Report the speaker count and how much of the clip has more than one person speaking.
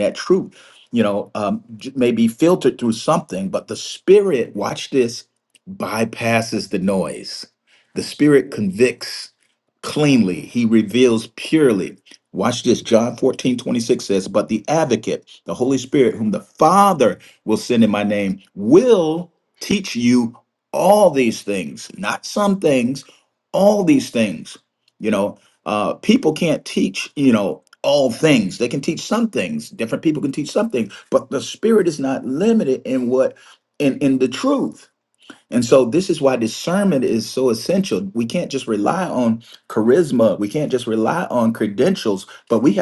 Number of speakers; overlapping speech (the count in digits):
1, no overlap